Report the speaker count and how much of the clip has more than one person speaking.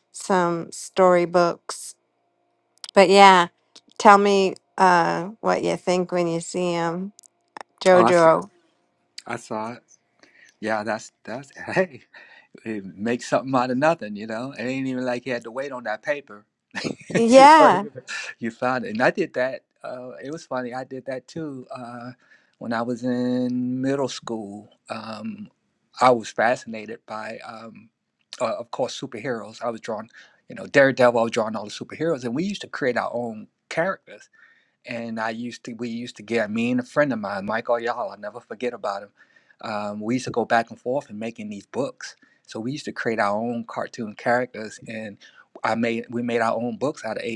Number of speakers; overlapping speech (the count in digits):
2, about 2%